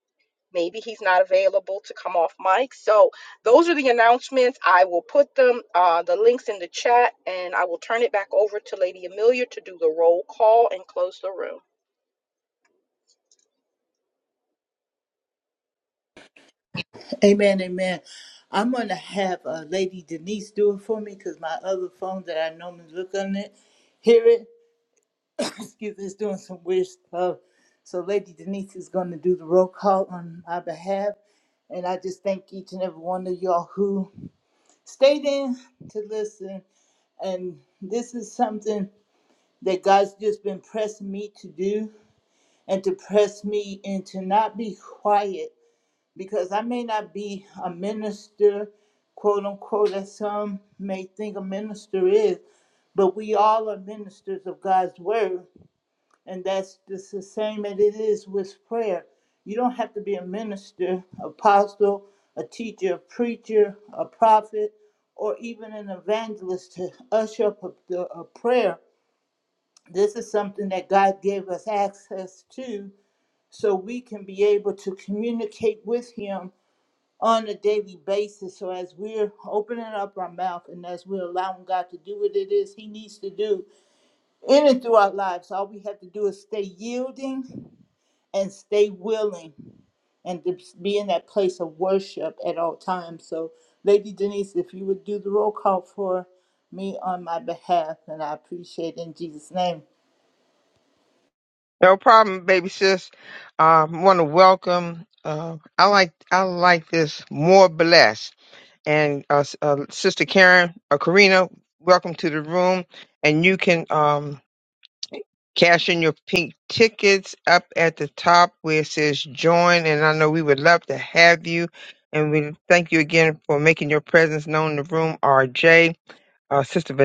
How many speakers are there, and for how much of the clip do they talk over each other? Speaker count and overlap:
3, no overlap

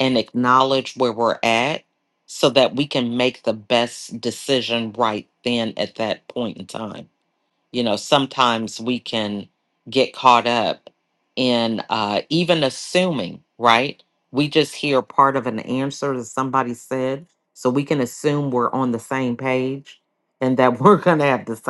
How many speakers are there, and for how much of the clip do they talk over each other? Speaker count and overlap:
1, no overlap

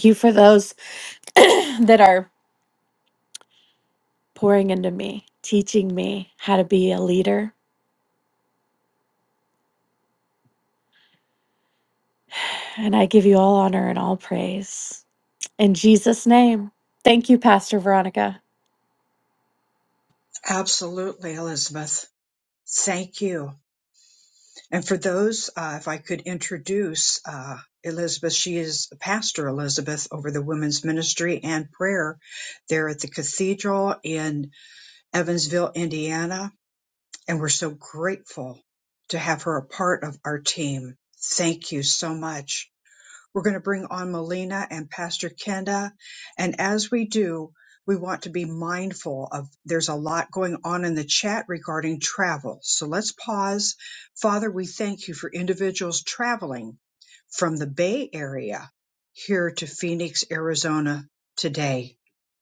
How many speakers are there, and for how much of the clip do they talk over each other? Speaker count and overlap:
2, no overlap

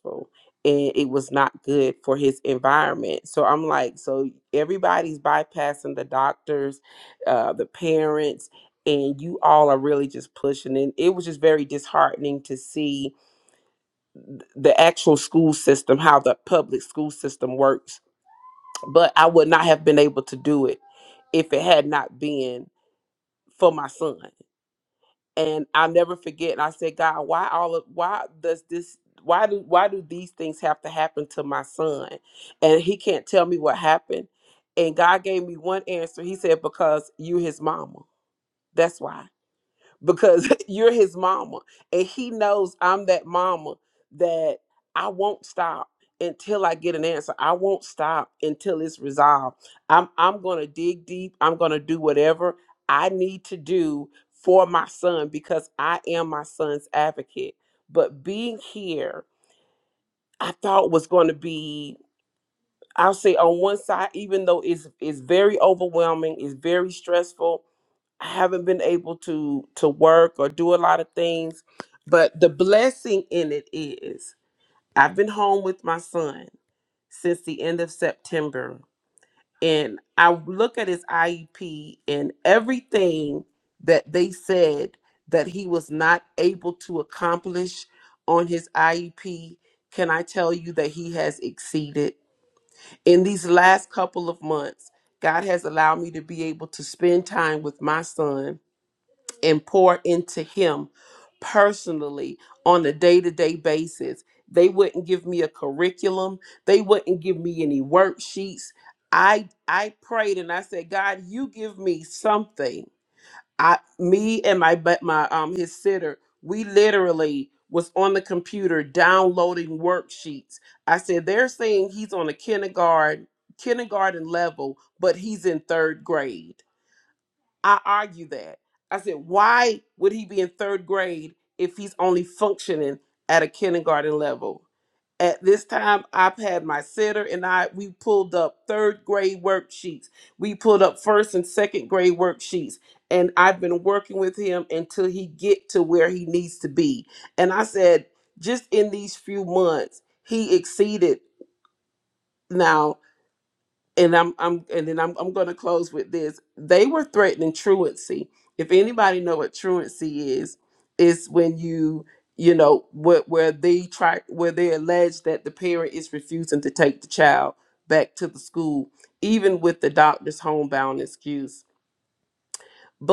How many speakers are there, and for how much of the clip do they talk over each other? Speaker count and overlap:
1, no overlap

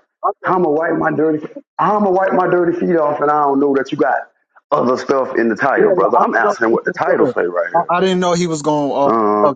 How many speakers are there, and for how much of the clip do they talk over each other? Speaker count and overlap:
2, about 23%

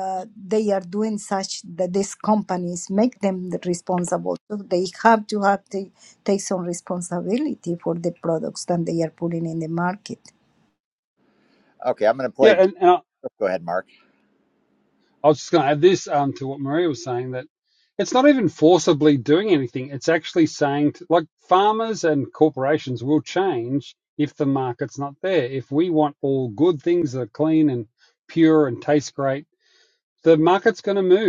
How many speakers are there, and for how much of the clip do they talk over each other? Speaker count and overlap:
3, about 1%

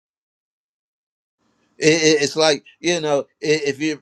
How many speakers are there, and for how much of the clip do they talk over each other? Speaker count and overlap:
1, no overlap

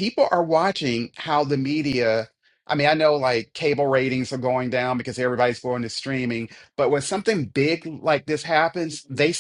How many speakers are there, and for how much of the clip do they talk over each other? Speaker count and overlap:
1, no overlap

